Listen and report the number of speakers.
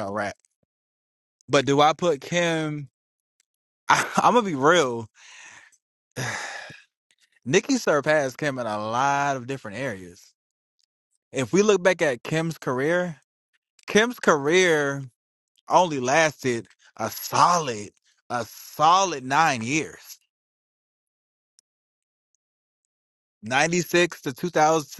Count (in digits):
1